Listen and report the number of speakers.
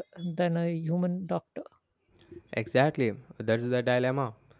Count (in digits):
2